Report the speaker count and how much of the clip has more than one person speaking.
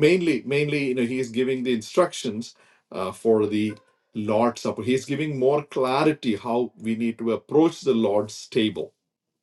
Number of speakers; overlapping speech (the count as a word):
one, no overlap